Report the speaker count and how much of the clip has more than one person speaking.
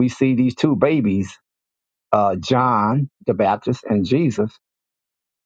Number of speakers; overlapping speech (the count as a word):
one, no overlap